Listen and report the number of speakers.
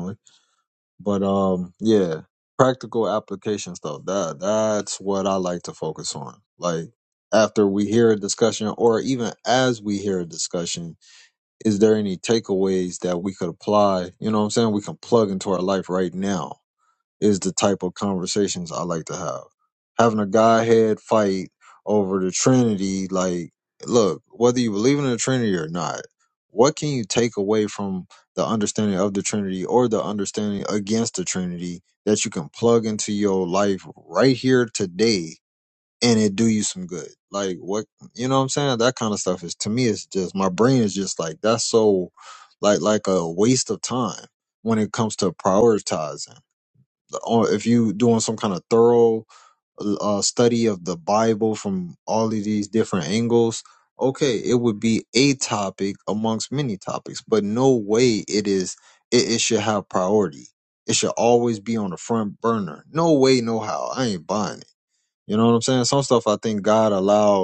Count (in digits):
1